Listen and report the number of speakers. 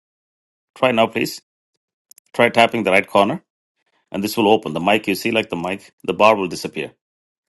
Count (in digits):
1